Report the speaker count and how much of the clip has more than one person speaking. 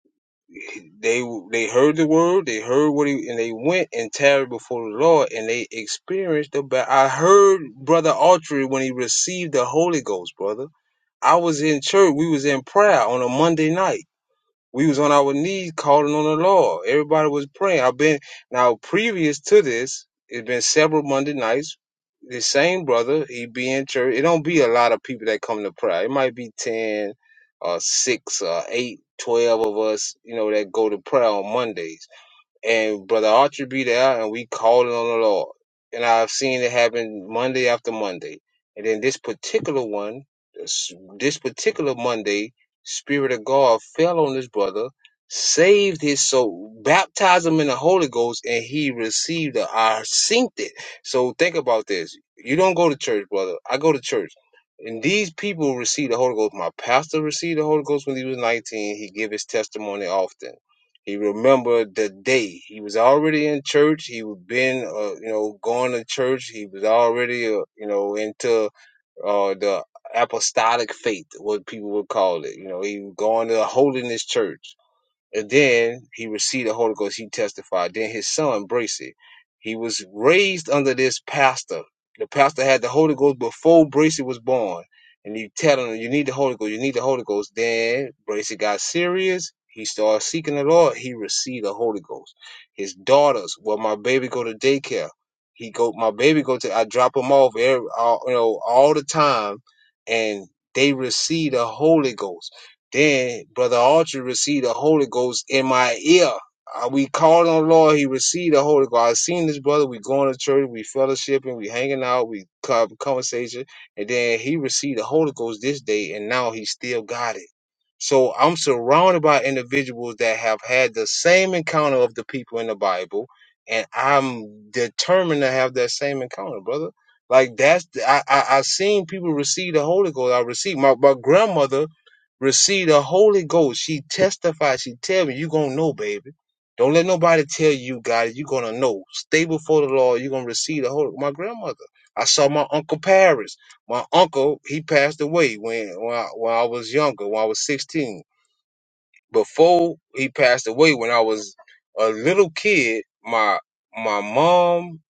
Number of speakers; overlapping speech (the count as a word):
one, no overlap